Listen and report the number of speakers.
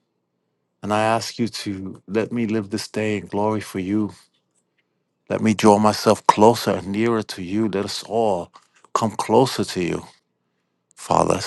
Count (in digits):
1